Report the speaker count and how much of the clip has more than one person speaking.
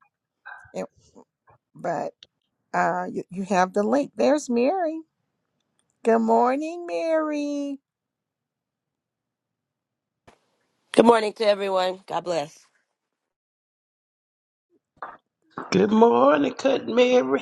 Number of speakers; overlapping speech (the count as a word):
three, no overlap